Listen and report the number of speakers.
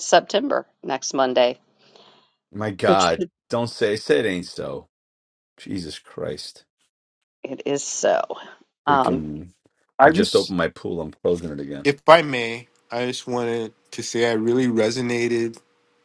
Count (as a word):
three